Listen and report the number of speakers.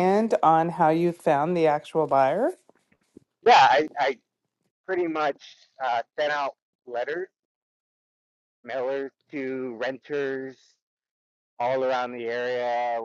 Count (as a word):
two